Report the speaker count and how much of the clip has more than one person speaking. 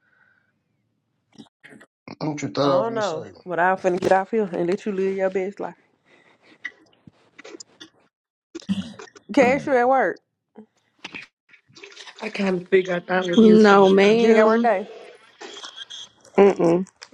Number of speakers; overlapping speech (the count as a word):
four, about 14%